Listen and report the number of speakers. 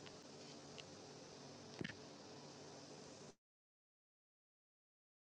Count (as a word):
zero